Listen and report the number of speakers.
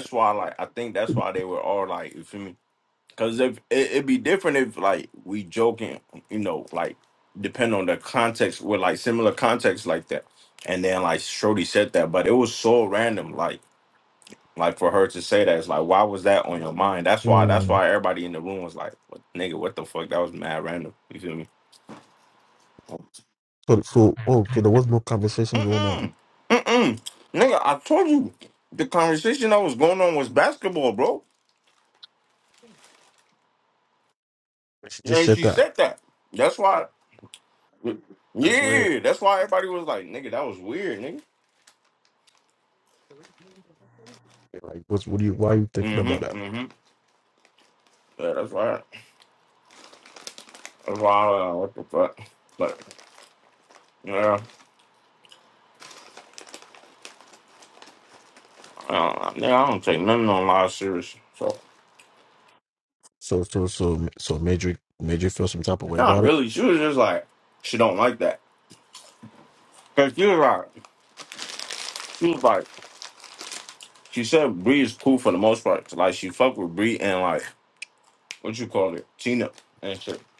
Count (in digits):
2